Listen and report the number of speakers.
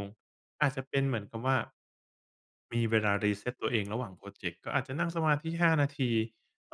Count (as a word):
one